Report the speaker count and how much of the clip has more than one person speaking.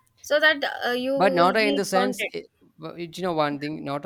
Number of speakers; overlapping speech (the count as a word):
two, about 28%